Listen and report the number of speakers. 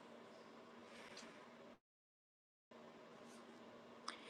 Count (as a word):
zero